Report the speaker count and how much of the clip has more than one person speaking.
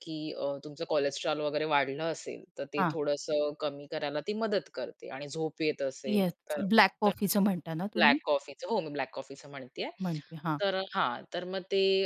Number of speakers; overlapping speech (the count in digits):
2, about 6%